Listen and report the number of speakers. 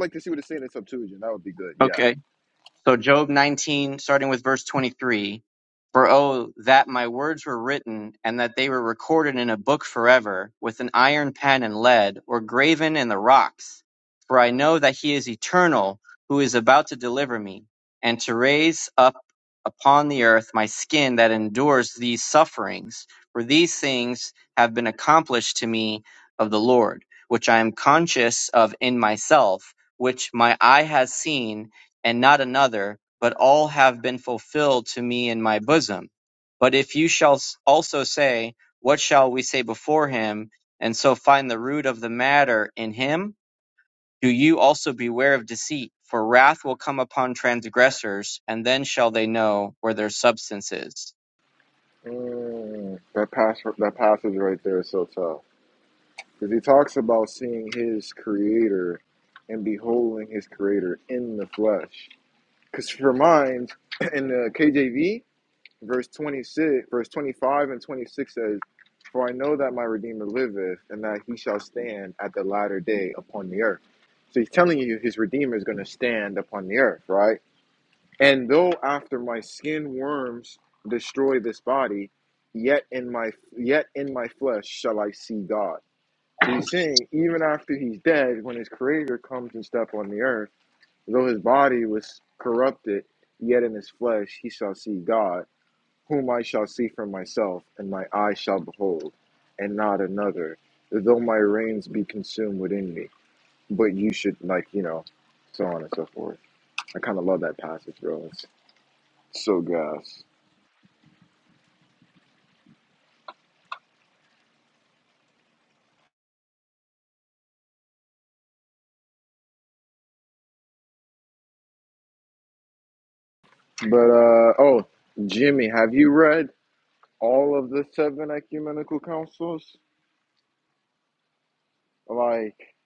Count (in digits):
2